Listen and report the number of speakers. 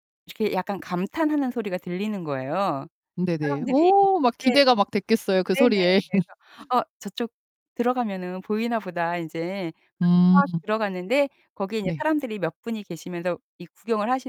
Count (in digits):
2